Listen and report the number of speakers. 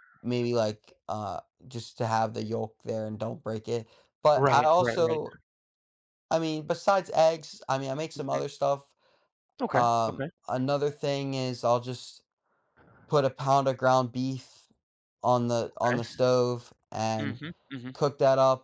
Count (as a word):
two